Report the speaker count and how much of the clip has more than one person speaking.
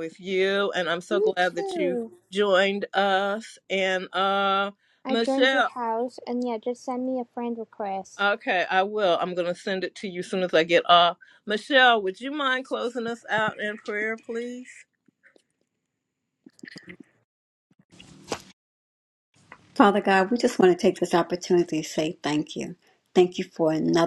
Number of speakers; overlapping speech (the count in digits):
3, about 6%